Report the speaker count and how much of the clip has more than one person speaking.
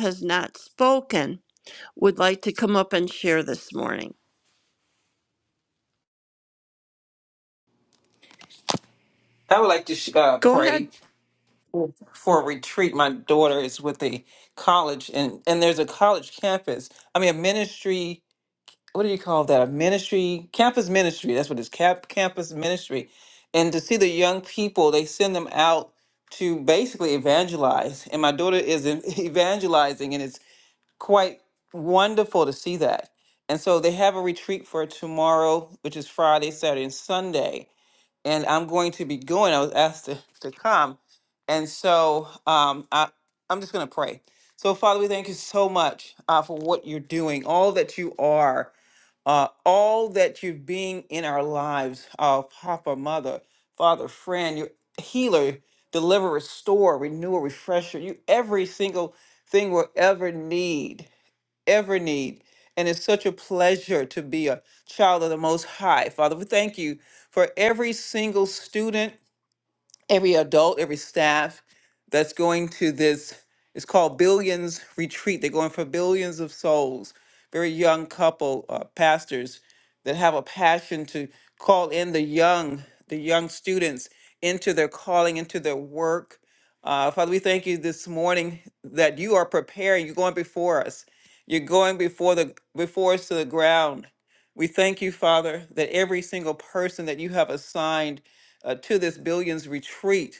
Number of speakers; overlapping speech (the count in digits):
2, under 1%